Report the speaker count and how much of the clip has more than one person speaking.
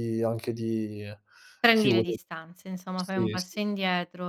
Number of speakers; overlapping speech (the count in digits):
2, about 18%